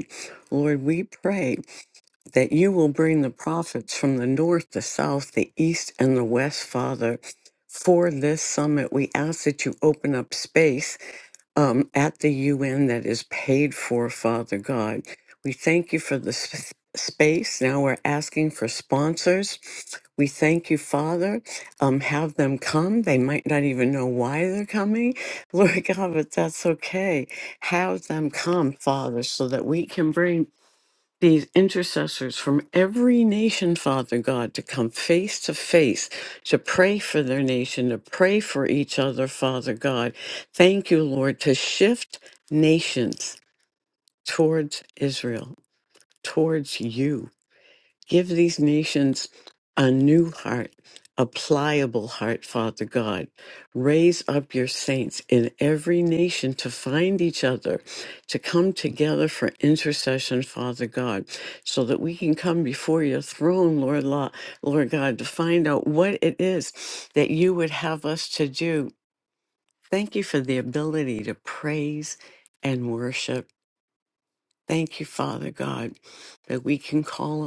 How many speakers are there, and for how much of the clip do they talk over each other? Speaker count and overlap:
one, no overlap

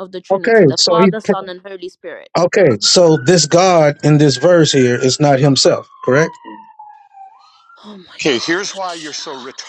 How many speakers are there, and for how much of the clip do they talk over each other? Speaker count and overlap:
three, about 19%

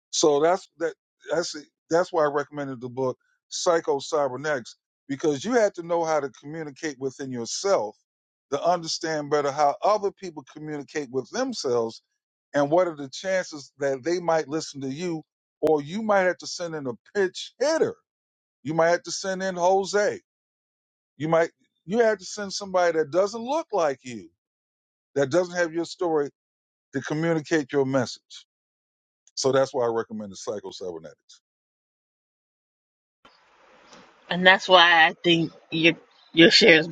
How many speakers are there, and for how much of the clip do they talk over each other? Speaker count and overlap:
two, no overlap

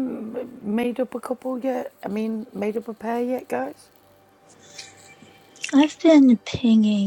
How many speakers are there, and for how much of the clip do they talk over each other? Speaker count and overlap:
two, no overlap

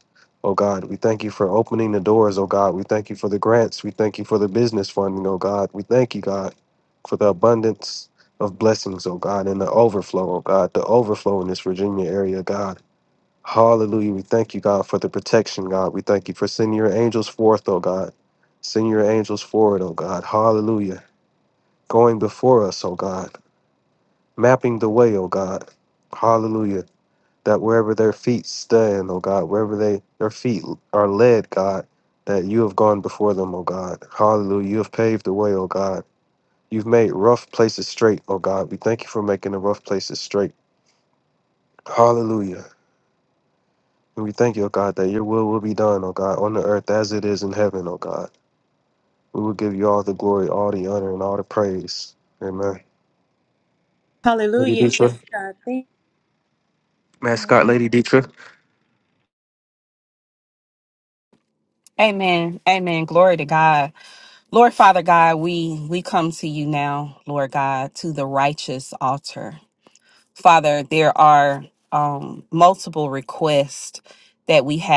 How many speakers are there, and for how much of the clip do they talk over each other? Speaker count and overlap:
three, about 1%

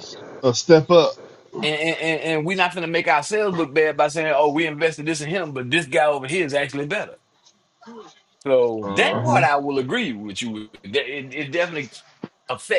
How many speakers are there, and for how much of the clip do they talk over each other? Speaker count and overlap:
two, about 5%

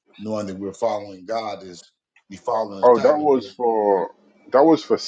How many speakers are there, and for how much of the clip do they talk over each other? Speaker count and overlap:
two, about 14%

